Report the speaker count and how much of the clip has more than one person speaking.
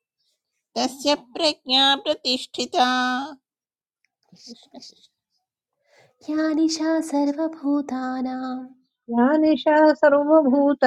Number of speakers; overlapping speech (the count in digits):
3, no overlap